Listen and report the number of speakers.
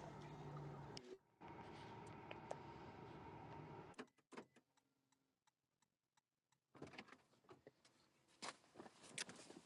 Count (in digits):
0